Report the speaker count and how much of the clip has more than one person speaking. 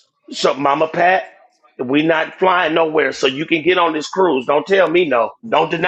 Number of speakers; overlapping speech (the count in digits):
1, no overlap